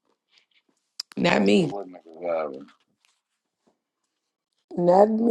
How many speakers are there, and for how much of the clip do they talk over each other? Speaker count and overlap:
2, about 8%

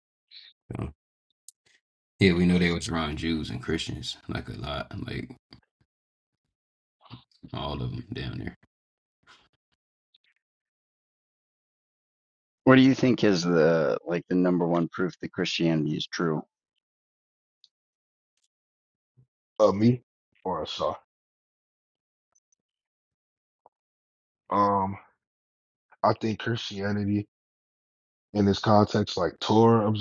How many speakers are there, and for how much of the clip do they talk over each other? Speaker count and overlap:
3, no overlap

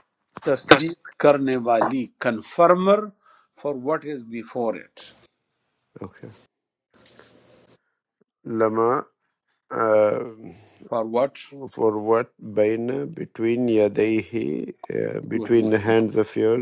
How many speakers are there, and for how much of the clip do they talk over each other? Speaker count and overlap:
2, no overlap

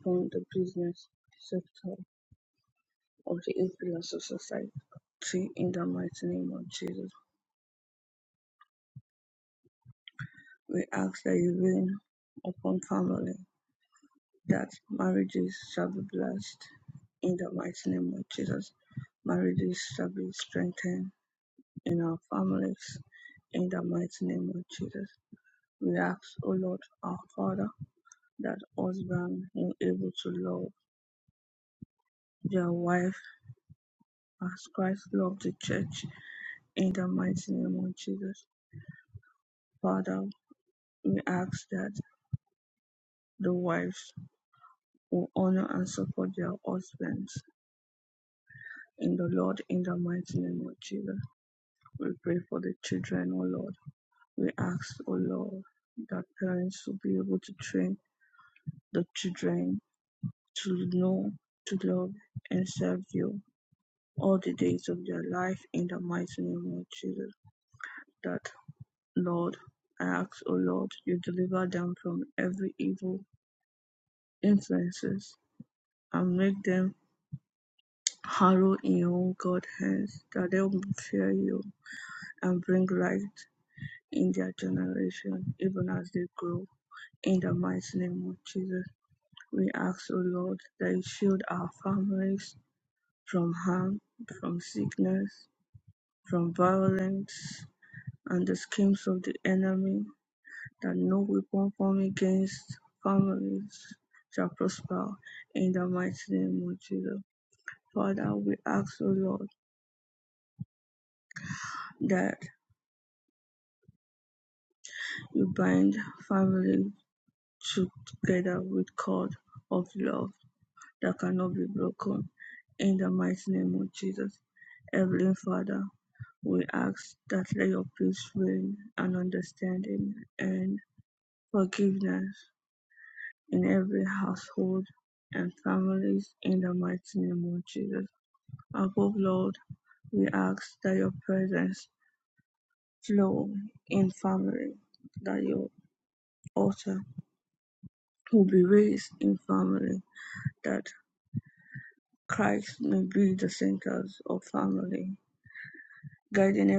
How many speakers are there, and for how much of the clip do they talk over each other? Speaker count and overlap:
1, no overlap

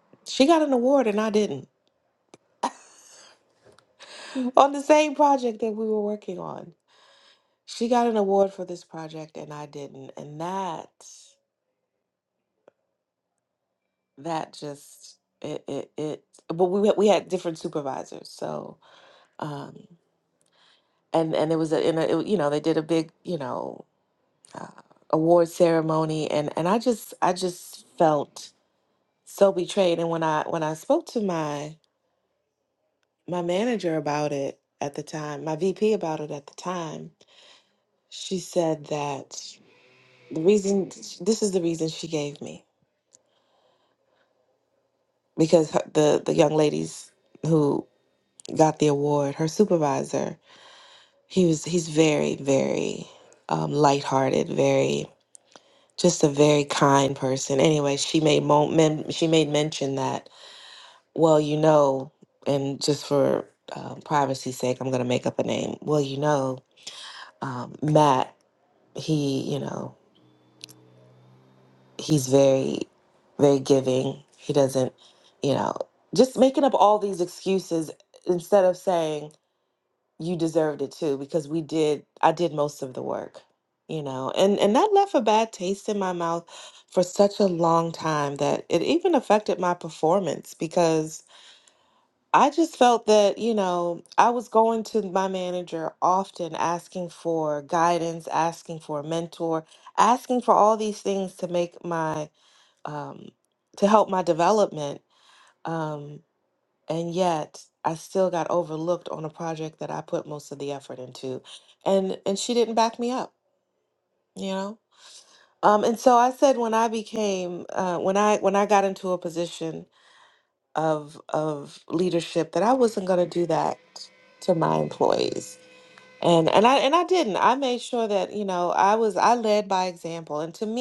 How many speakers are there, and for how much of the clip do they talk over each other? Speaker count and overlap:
1, no overlap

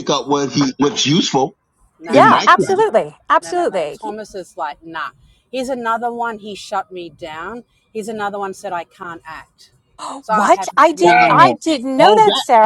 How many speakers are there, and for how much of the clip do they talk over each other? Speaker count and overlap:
3, about 26%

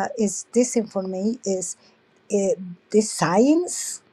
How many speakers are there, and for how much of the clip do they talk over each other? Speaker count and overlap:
1, no overlap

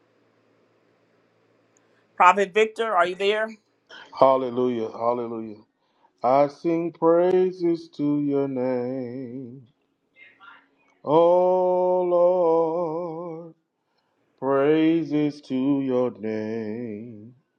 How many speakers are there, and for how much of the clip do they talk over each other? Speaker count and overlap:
2, no overlap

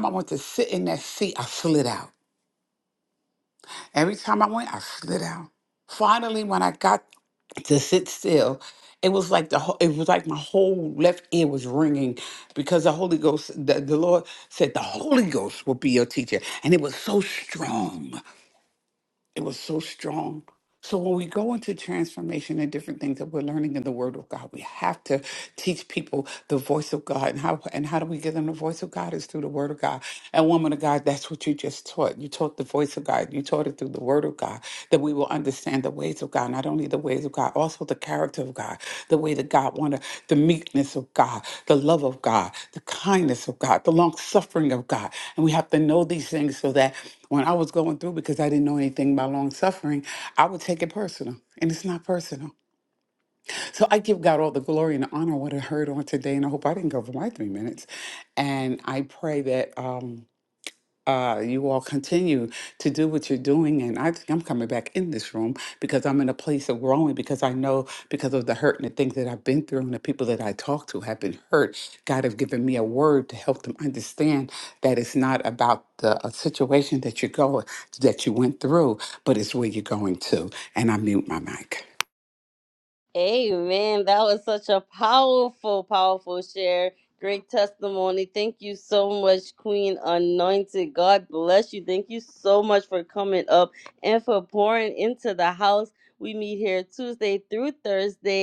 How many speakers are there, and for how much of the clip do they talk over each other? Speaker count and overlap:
2, no overlap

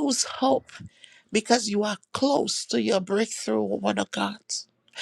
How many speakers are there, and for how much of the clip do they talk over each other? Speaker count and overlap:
1, no overlap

